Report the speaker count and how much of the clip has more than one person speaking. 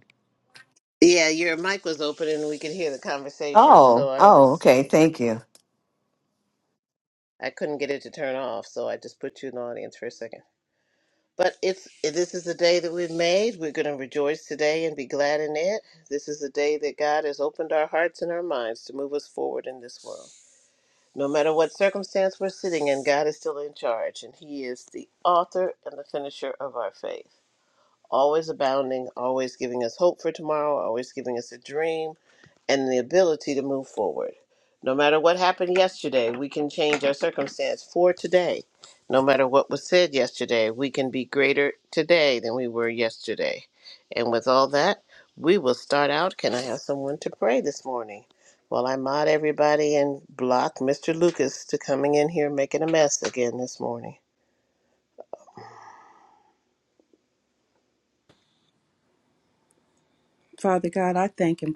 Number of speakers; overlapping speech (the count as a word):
three, about 1%